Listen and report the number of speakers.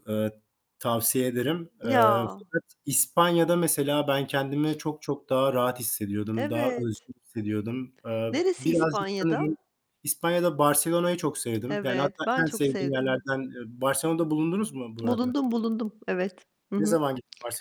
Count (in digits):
2